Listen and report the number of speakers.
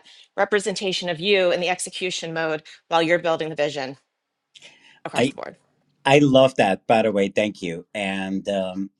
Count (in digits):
2